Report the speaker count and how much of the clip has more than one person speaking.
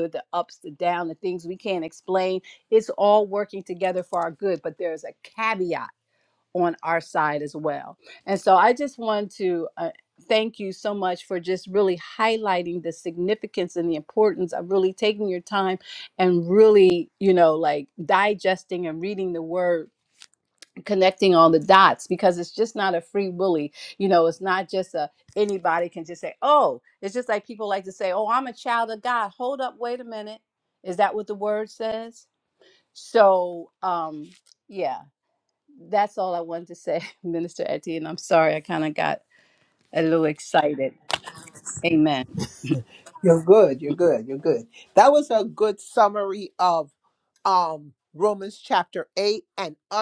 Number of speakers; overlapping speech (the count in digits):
2, no overlap